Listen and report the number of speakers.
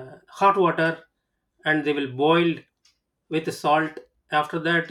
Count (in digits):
1